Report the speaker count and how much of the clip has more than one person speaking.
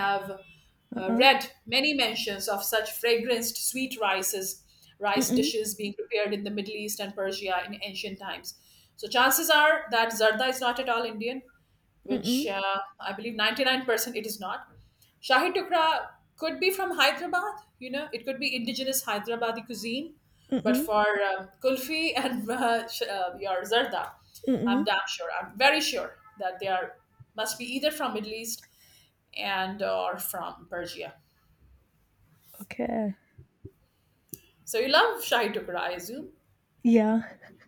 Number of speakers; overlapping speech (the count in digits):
2, about 4%